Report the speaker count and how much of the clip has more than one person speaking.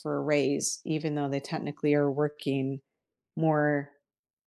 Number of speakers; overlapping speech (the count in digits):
1, no overlap